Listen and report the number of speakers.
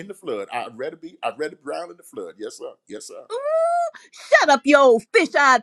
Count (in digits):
2